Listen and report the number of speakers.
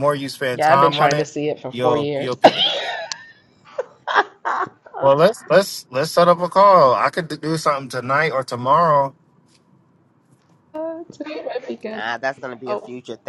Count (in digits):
3